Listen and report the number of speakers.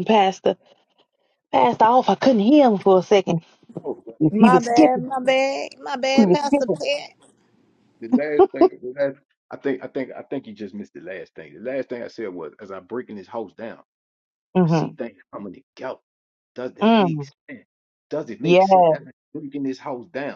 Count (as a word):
three